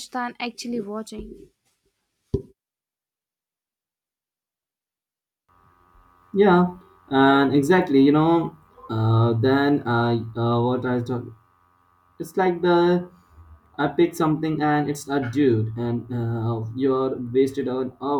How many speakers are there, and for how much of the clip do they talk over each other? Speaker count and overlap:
2, no overlap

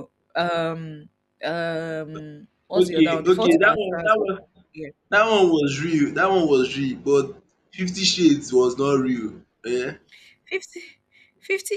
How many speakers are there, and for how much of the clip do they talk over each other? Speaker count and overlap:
2, about 13%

